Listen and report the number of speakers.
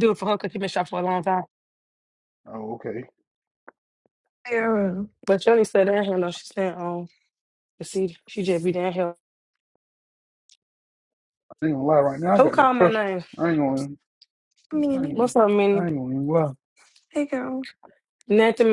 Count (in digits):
3